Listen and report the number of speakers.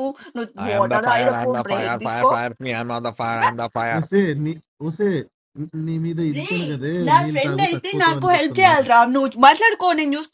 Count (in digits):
3